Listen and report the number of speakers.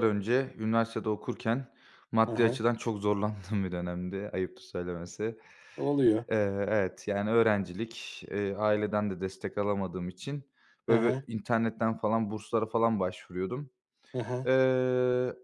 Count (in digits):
2